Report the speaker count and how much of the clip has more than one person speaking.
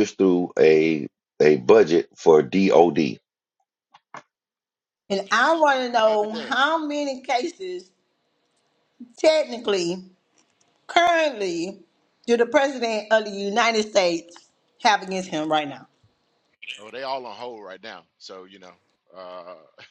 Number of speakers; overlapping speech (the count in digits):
3, about 3%